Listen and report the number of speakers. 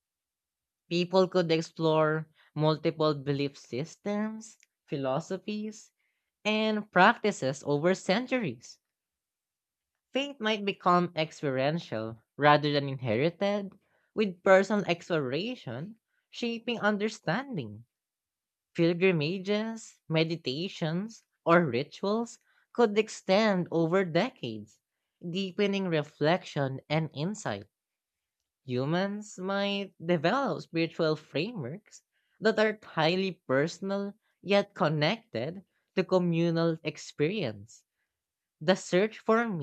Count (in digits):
1